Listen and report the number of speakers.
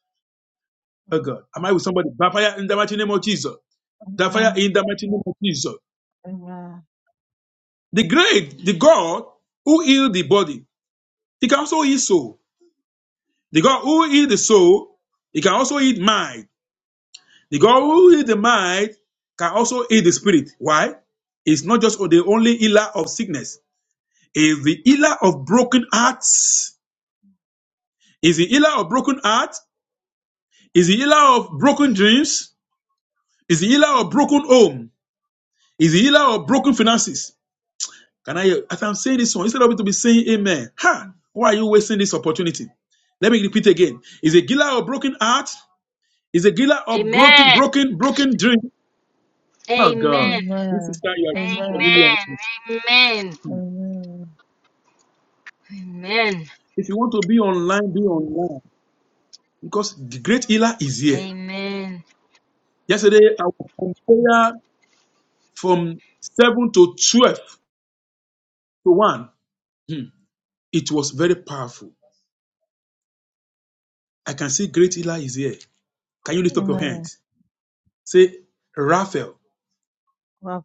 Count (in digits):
3